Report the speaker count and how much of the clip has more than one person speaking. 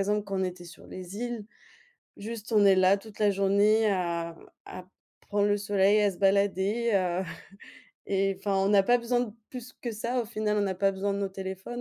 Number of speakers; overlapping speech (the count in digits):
1, no overlap